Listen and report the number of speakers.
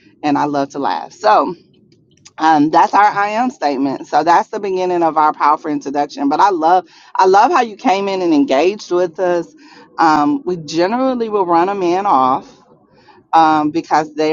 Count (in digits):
1